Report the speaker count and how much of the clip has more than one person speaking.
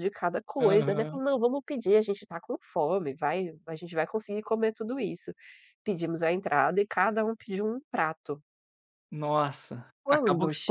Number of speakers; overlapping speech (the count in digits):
2, about 11%